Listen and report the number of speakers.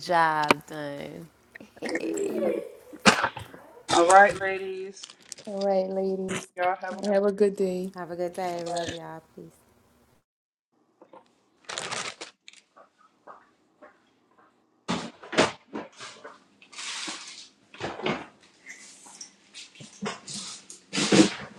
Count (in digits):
3